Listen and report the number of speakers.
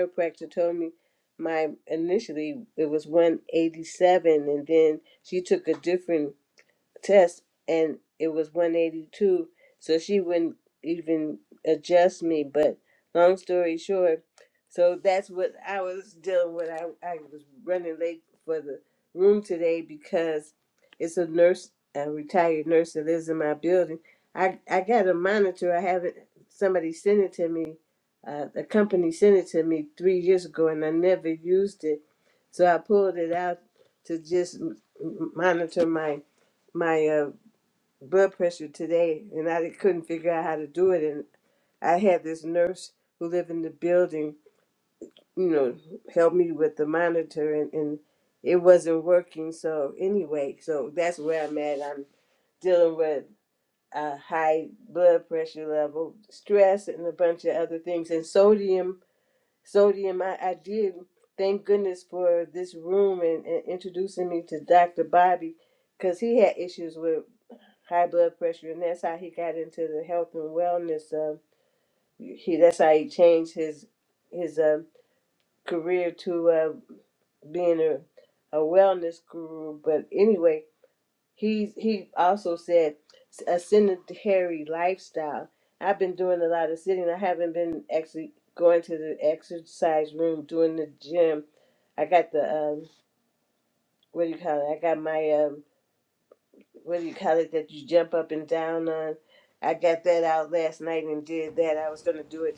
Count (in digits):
1